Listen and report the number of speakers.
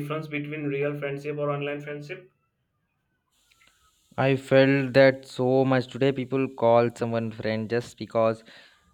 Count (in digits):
2